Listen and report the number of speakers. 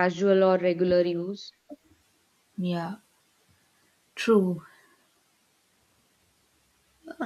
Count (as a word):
two